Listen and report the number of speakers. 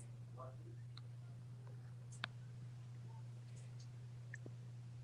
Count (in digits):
0